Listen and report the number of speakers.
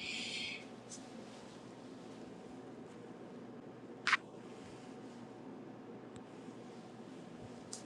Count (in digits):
0